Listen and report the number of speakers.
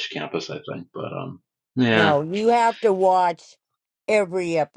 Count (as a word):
two